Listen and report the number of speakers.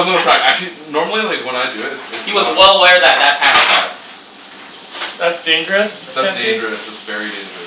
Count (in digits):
3